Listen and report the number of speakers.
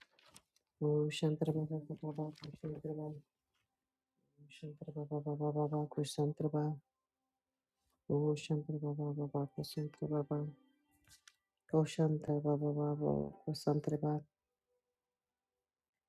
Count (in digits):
1